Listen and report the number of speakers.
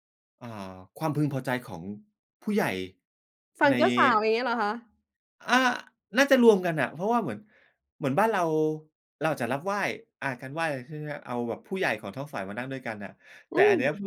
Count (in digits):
2